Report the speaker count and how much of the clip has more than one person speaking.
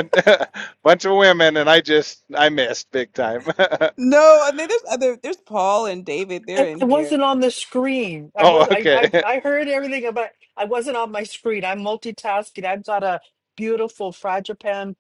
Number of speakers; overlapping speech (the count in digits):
3, about 9%